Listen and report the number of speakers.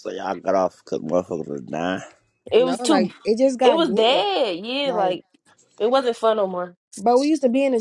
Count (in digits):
3